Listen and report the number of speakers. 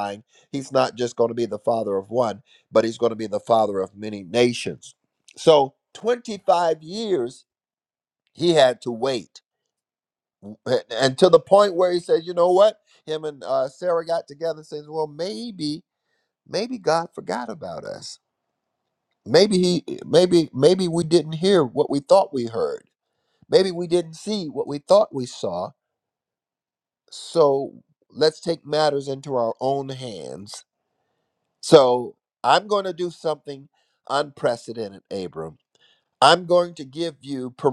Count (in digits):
1